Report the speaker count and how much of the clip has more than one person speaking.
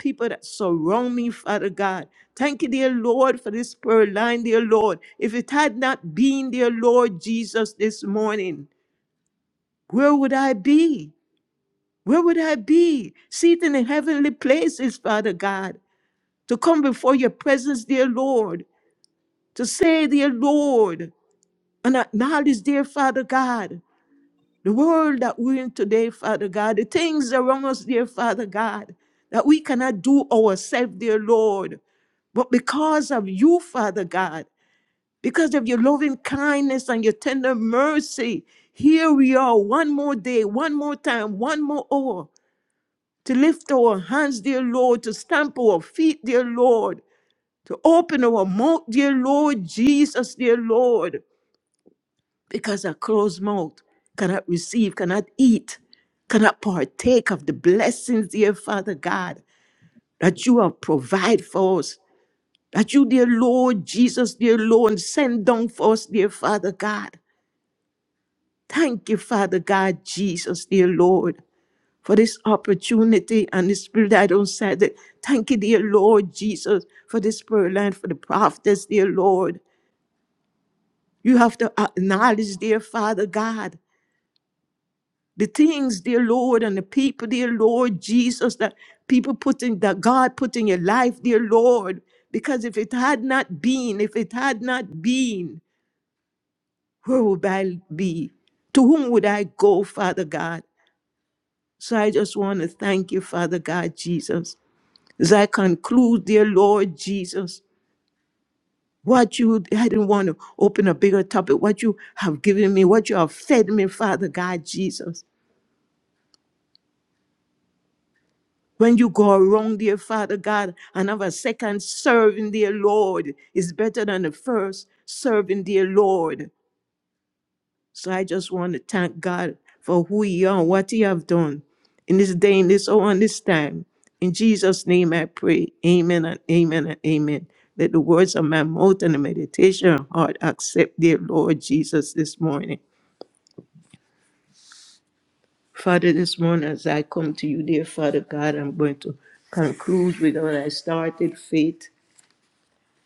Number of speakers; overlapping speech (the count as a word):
one, no overlap